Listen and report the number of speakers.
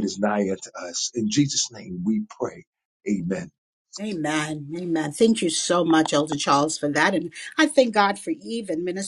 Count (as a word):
two